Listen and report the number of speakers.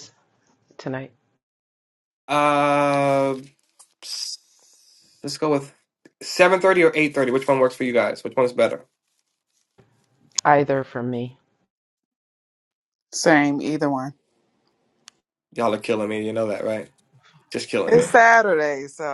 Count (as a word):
three